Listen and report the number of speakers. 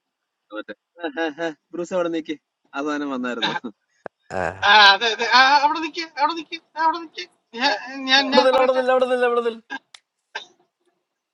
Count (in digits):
3